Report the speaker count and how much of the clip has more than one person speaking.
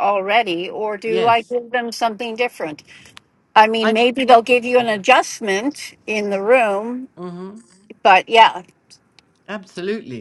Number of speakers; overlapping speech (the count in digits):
2, about 5%